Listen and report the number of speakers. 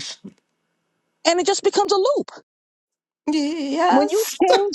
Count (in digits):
2